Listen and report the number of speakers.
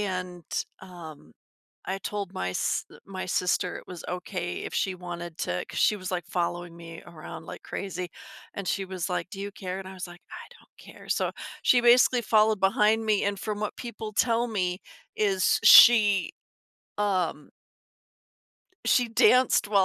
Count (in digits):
1